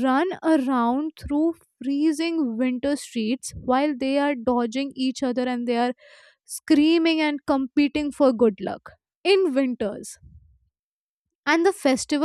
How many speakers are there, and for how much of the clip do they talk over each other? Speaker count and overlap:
1, no overlap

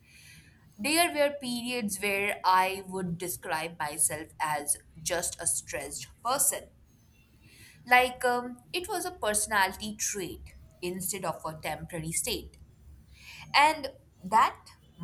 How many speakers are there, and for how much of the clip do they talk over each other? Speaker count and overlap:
1, no overlap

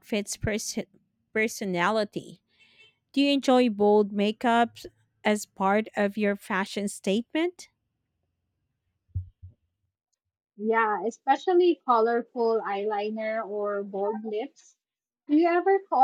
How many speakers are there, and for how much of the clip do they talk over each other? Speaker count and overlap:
2, no overlap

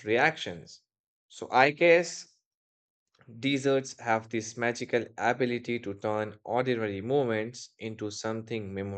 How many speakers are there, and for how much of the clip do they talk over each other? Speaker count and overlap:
1, no overlap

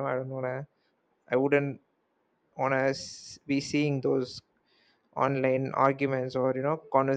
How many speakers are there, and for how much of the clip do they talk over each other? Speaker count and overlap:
1, no overlap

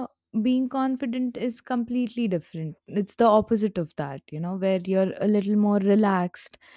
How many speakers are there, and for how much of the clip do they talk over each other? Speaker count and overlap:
1, no overlap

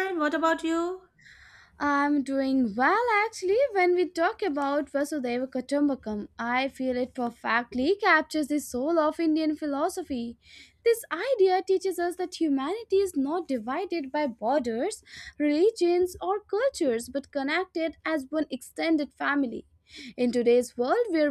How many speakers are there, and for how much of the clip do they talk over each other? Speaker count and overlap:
2, no overlap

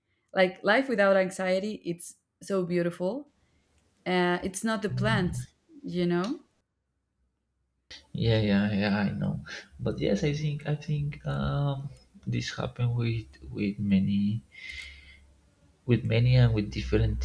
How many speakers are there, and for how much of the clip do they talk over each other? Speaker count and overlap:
2, no overlap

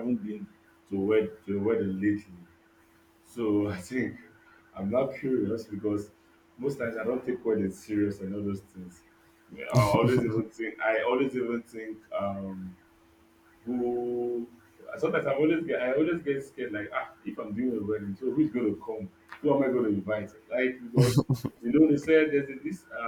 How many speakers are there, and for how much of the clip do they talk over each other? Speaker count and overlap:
1, no overlap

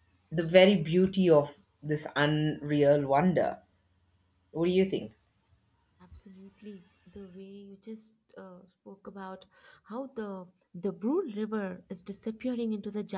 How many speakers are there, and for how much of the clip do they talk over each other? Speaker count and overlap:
2, no overlap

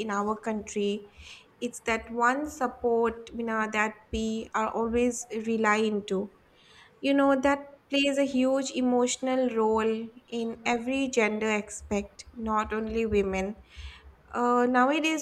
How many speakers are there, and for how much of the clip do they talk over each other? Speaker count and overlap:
1, no overlap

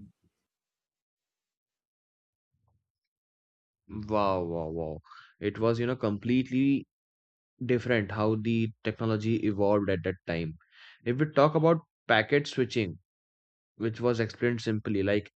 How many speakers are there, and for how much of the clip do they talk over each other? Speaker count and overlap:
1, no overlap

